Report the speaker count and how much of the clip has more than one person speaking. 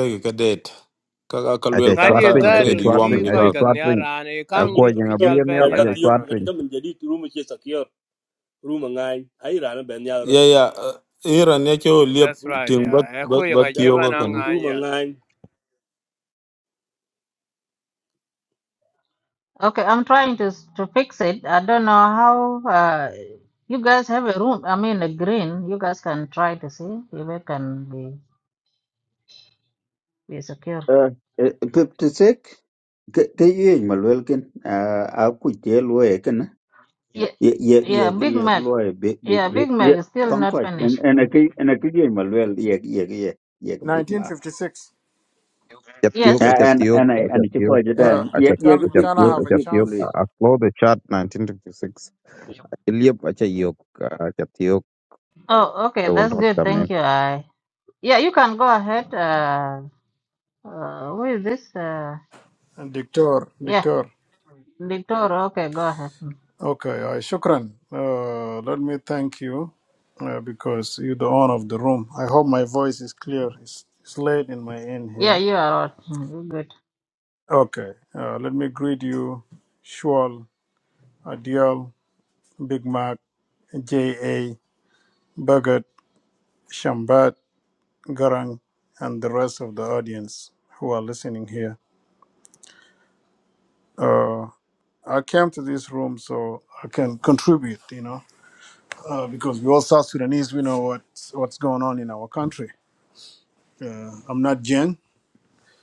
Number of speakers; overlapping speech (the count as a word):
seven, about 14%